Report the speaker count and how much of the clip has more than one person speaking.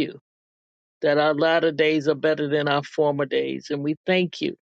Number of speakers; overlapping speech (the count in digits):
1, no overlap